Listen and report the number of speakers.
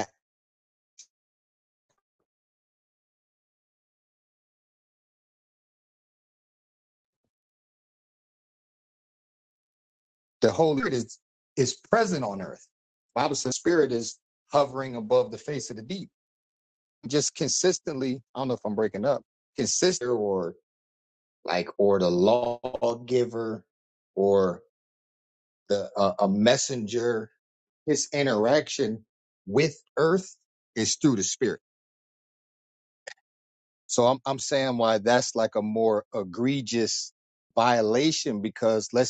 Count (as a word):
one